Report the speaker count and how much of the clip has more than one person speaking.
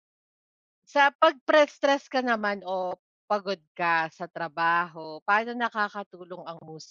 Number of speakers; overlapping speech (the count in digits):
1, no overlap